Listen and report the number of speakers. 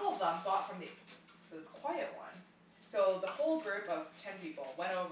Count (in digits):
1